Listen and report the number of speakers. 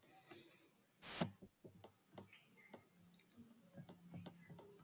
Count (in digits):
0